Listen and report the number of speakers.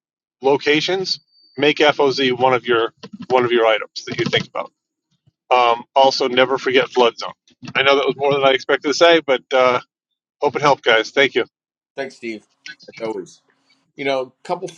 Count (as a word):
two